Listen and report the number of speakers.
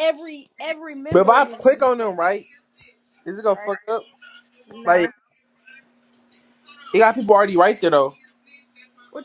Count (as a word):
two